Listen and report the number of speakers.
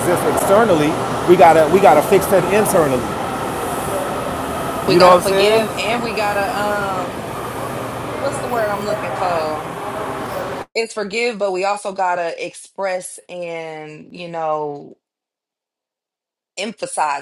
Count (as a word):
two